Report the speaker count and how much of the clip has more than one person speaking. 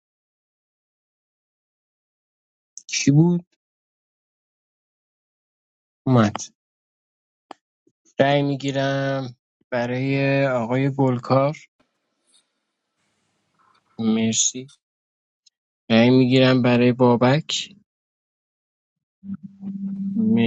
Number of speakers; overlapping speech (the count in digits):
1, no overlap